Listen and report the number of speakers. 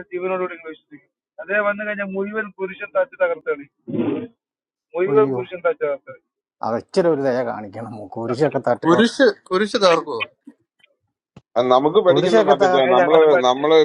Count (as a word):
four